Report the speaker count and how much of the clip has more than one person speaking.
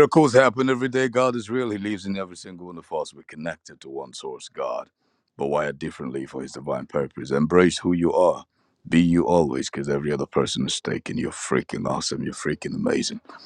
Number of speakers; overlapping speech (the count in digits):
1, no overlap